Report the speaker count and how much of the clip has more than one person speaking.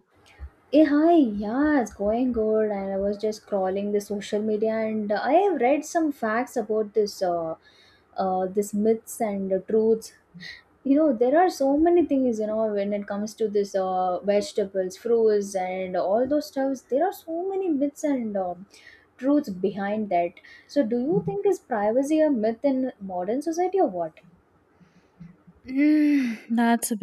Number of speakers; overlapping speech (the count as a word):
two, no overlap